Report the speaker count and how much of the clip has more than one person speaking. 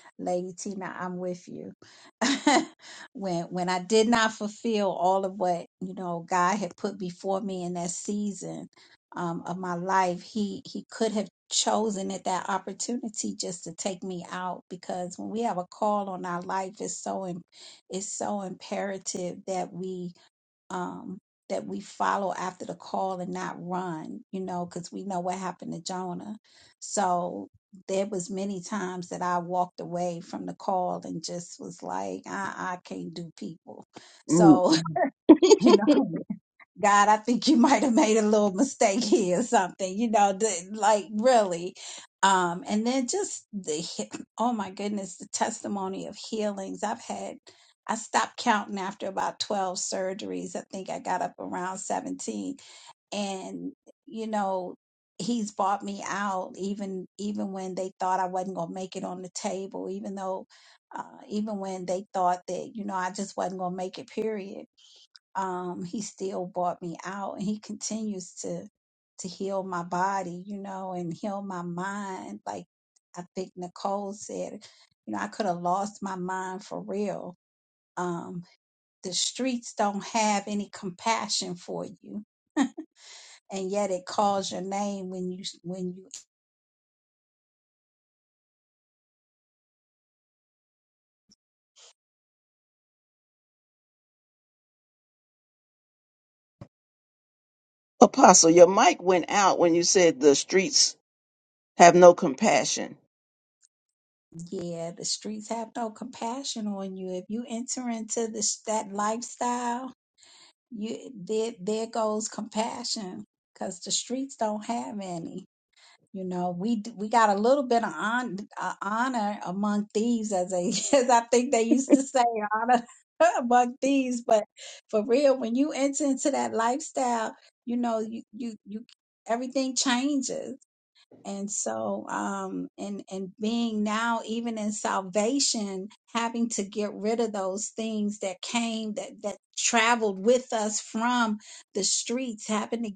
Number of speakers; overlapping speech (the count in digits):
2, under 1%